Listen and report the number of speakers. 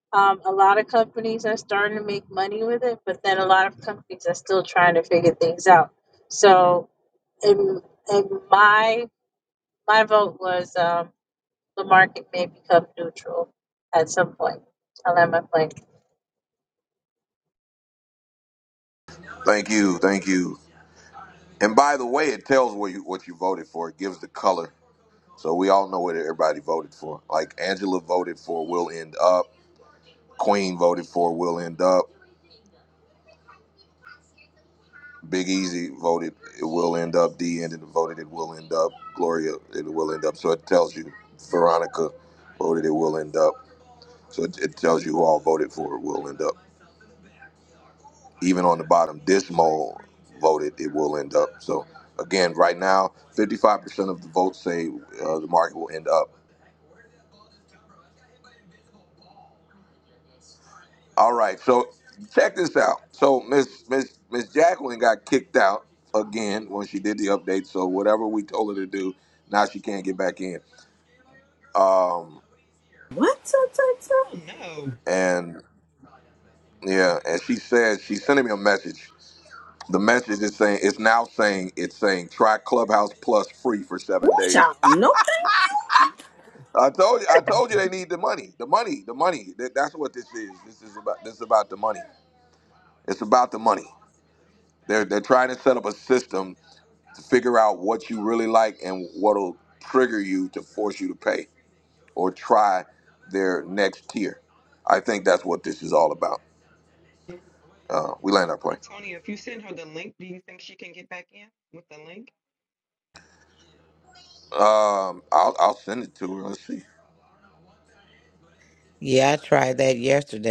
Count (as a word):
five